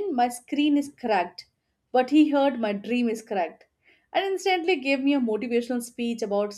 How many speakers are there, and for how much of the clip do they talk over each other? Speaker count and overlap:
1, no overlap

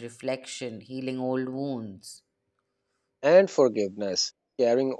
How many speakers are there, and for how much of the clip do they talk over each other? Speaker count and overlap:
2, no overlap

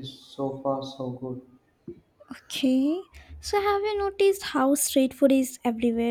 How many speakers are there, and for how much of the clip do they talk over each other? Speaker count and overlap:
2, no overlap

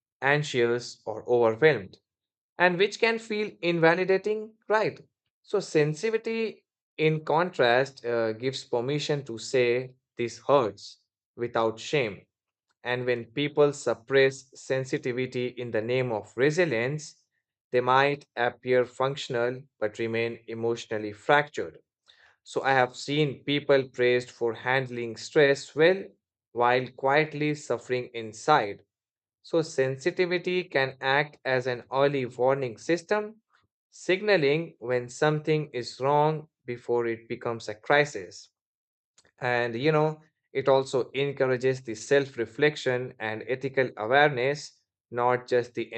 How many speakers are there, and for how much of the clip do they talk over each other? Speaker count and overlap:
1, no overlap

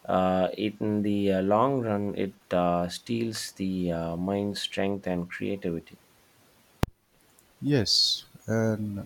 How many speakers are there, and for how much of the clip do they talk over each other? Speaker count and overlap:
2, no overlap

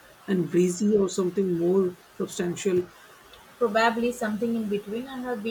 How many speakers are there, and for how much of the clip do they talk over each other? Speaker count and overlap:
2, no overlap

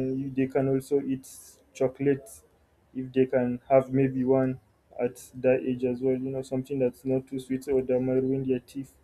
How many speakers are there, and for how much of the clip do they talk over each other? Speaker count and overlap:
1, no overlap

